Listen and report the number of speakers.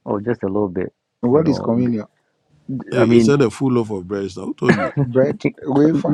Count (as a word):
three